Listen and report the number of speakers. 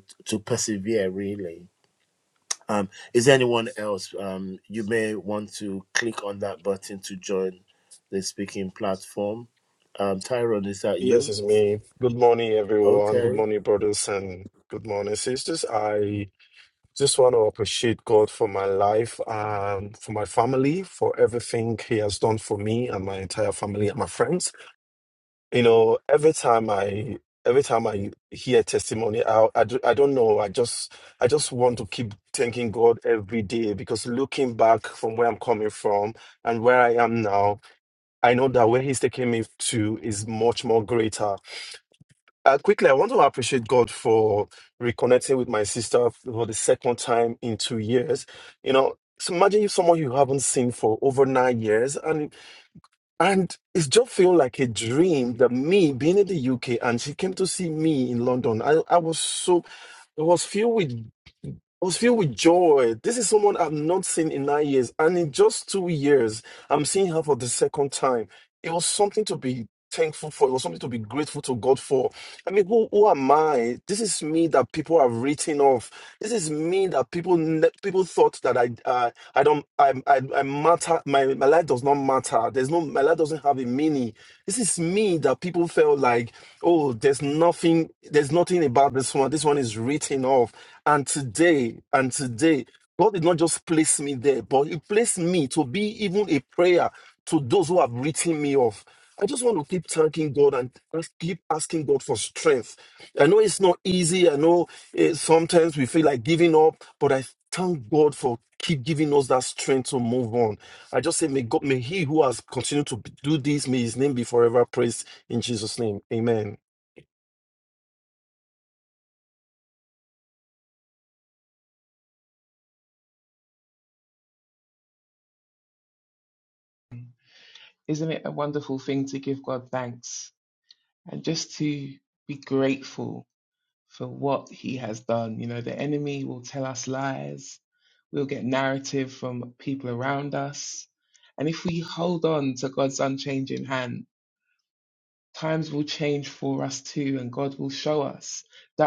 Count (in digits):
3